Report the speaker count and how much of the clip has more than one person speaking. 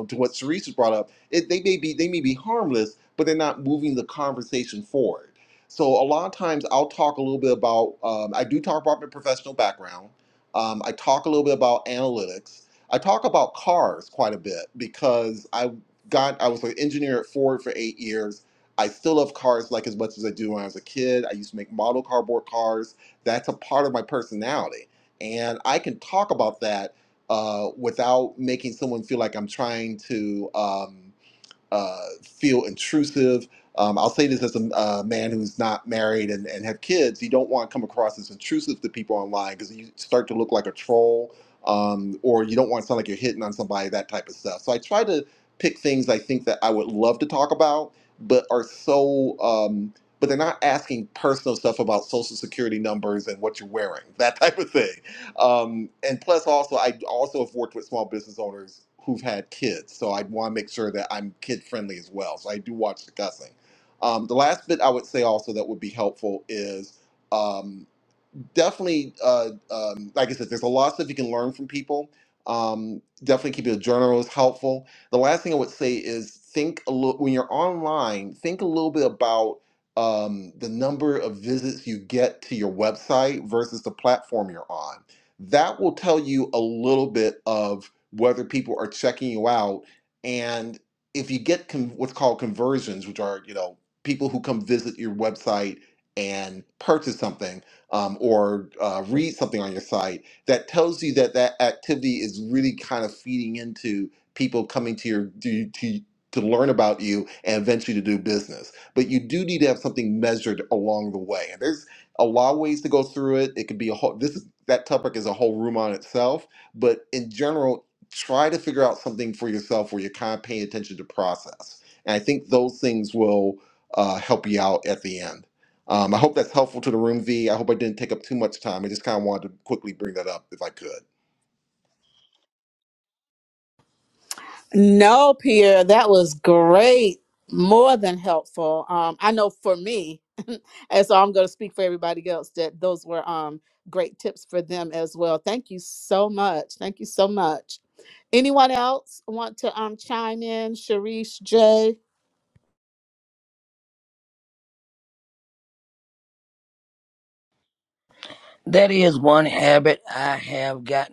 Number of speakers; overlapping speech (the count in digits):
3, no overlap